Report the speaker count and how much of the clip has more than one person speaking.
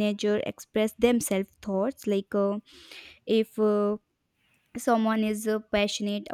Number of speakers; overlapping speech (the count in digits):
1, no overlap